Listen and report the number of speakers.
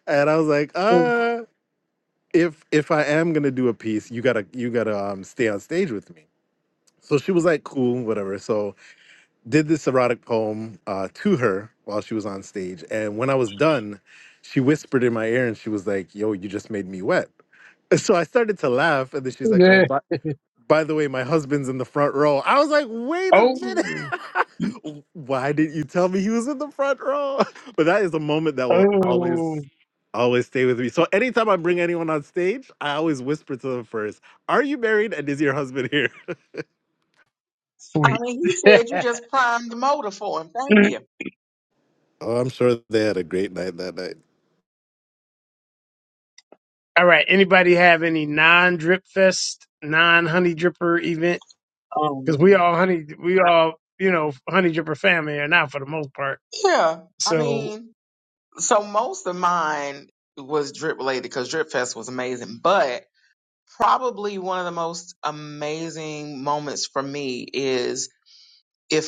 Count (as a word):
three